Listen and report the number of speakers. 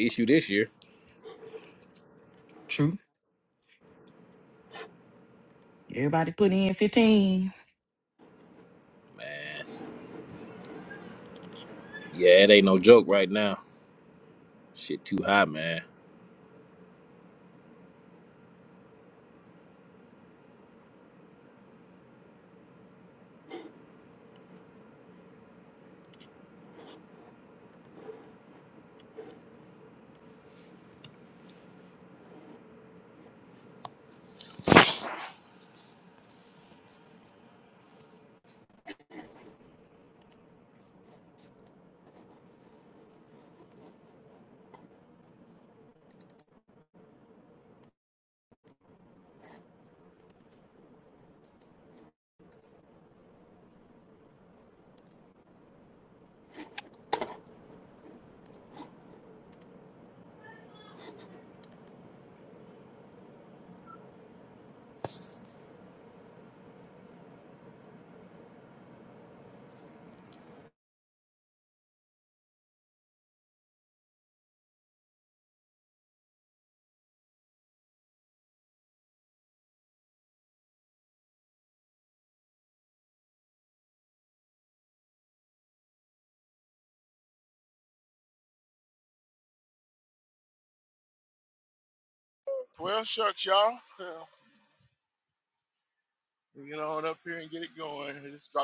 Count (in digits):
3